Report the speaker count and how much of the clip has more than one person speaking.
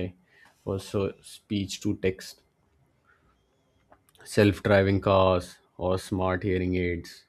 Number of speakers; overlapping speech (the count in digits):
1, no overlap